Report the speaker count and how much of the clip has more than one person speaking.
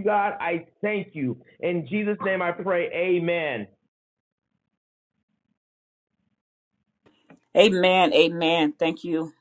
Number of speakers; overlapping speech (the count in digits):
2, no overlap